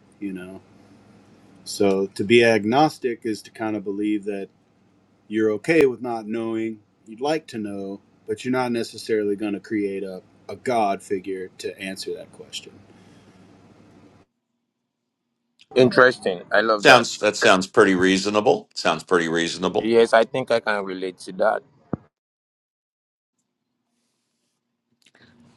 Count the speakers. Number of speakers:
3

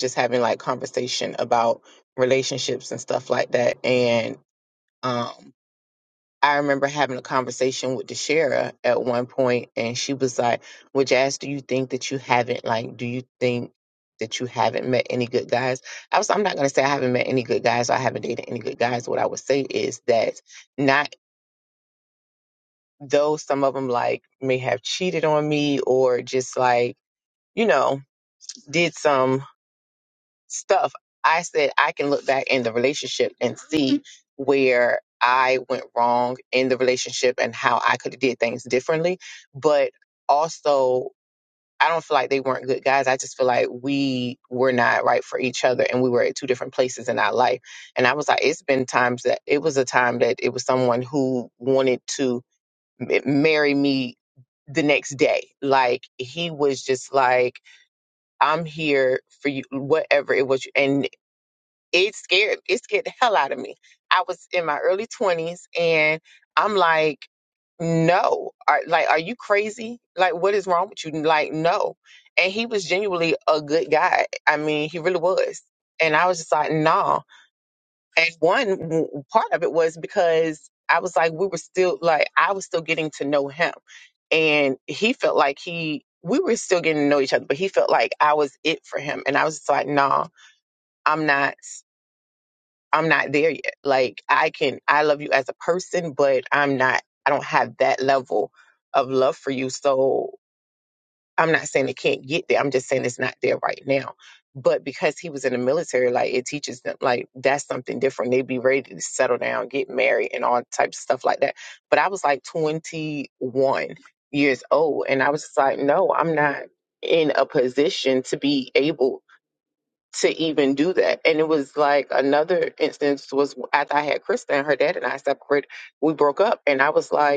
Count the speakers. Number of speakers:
1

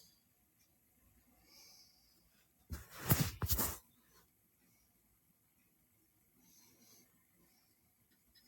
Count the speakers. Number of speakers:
0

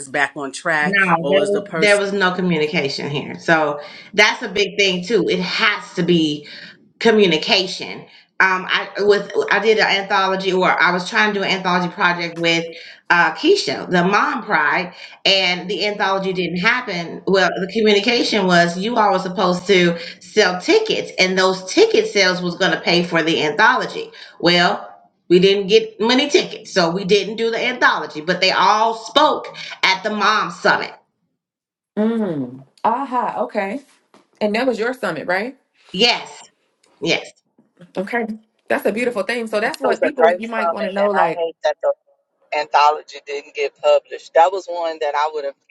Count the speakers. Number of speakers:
4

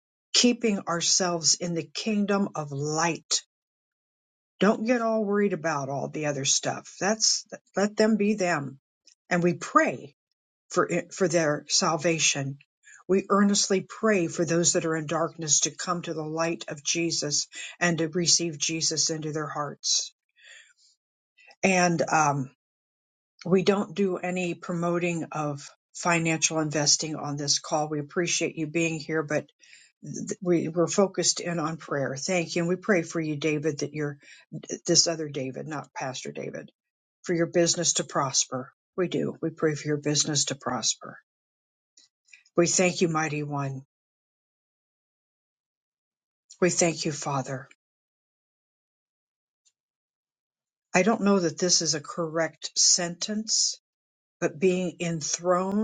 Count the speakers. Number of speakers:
1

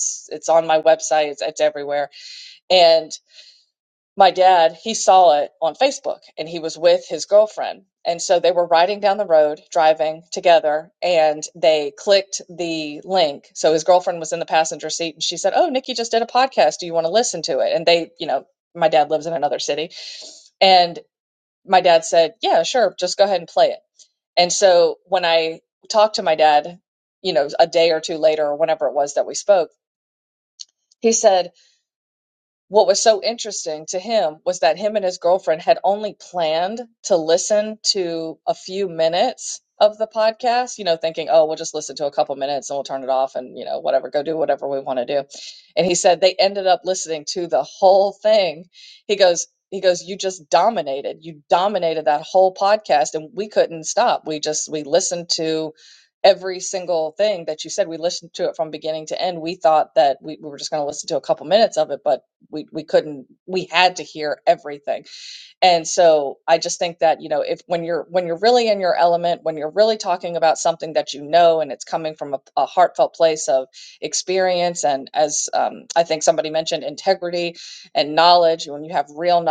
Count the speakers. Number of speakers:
1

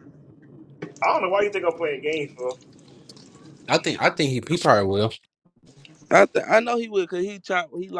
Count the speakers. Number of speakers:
3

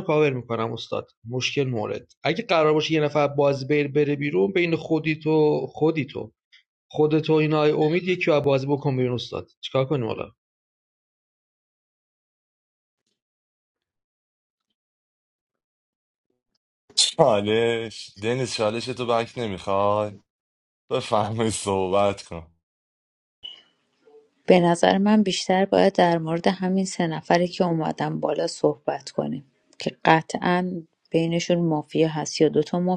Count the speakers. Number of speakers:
3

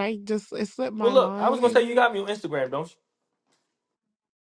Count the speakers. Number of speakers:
2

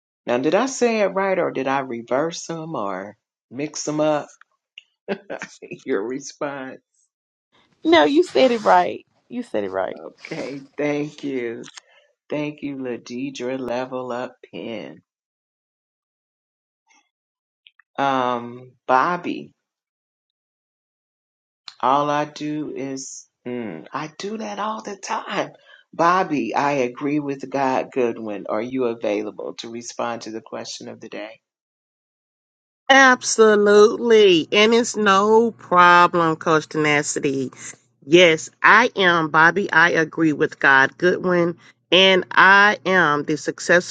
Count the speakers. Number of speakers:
3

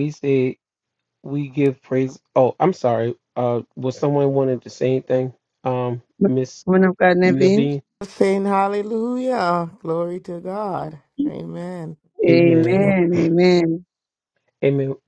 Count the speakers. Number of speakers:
3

